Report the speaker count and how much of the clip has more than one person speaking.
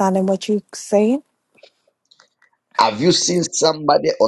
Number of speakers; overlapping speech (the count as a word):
two, no overlap